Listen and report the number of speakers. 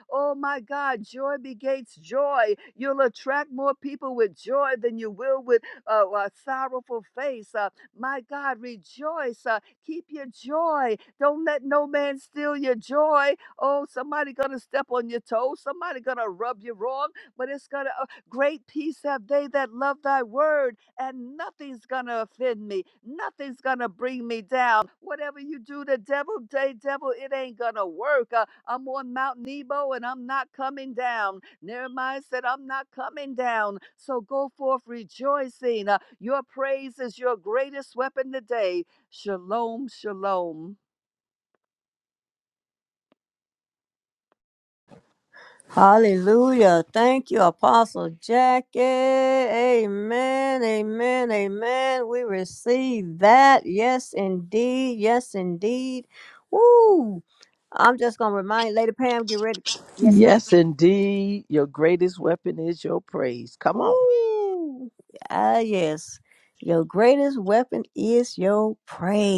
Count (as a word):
three